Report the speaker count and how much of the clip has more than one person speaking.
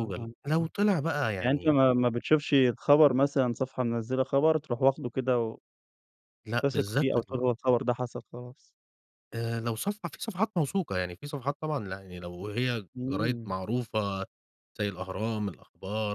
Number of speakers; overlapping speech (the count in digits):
2, about 14%